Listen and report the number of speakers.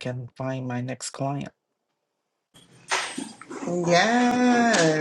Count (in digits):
2